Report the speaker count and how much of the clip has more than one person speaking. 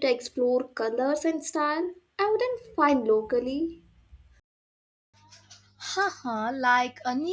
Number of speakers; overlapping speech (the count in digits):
2, no overlap